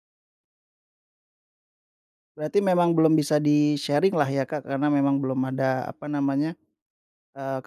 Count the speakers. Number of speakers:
one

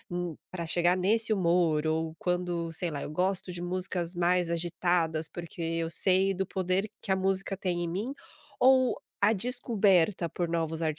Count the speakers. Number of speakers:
one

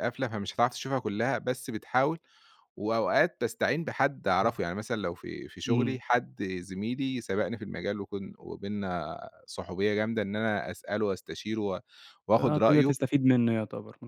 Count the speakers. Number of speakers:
two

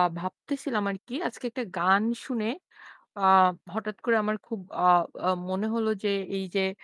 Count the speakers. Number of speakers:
one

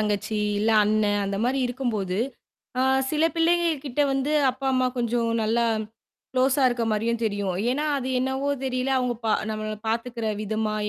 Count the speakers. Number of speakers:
one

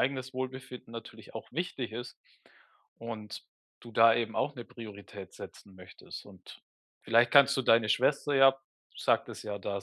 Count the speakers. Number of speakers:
one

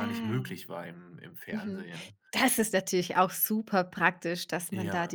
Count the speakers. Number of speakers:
two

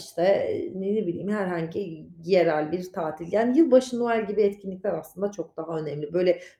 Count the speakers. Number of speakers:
one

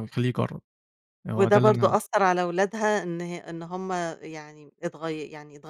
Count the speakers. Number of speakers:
two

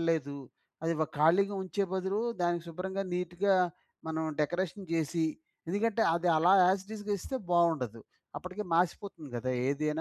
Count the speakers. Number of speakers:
one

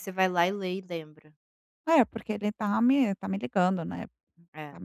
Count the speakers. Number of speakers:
two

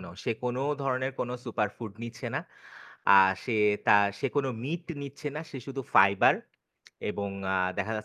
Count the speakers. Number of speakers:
one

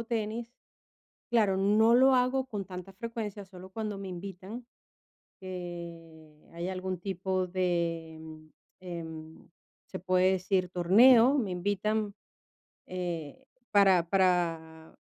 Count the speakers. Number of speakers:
one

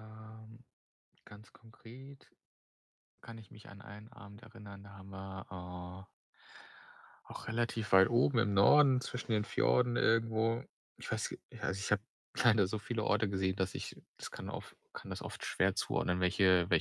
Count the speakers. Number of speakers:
one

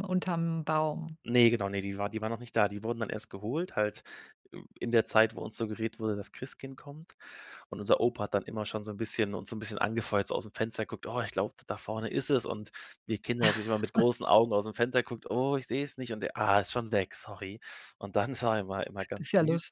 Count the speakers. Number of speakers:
two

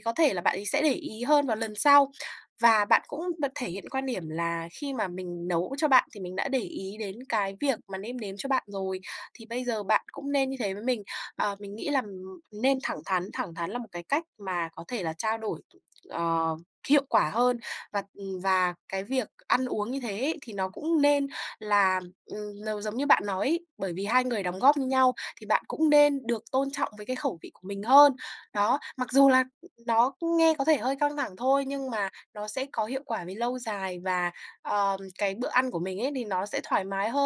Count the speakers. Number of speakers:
one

